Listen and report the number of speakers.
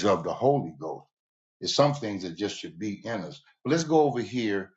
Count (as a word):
one